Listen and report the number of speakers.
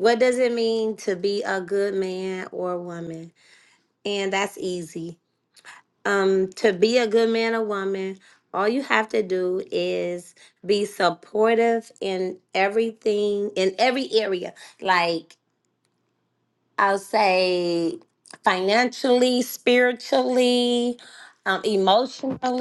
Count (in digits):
1